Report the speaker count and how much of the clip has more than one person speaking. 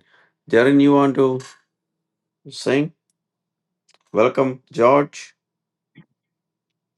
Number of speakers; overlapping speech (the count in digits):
1, no overlap